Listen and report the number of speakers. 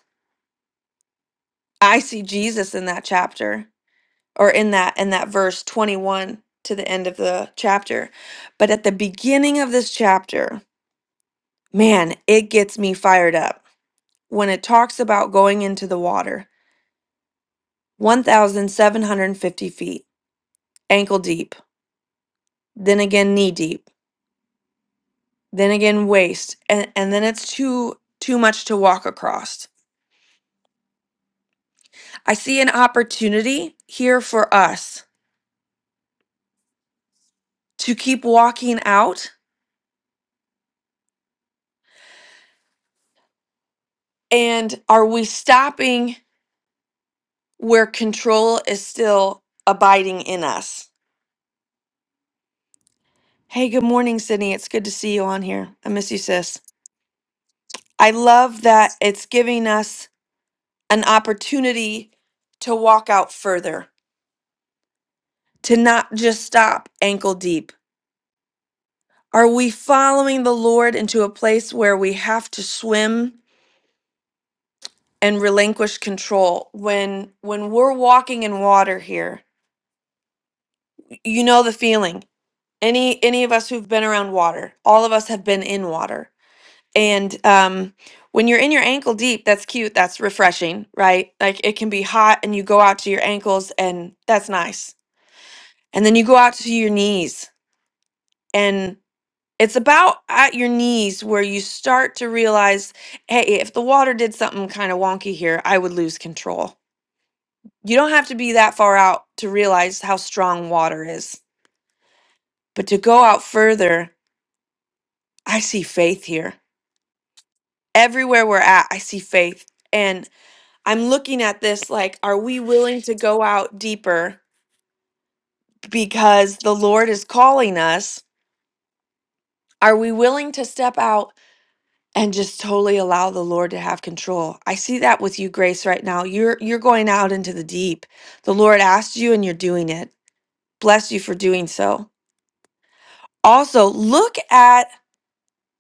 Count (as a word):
one